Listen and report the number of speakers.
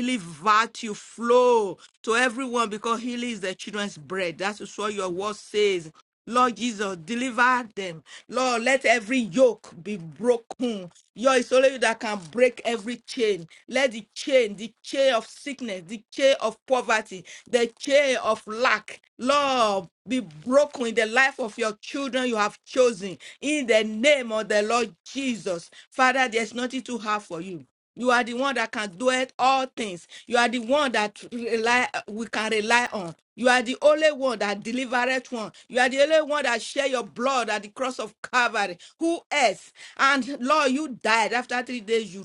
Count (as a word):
one